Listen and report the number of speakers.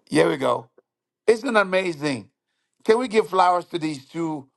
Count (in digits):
1